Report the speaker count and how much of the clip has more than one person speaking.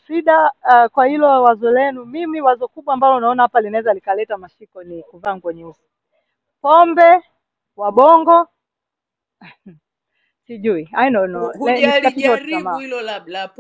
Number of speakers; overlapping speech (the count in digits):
2, about 11%